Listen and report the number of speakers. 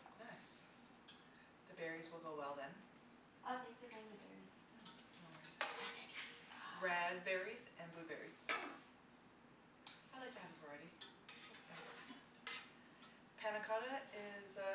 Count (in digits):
2